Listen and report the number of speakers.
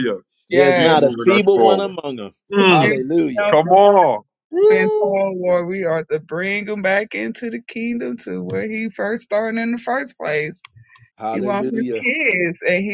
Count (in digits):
3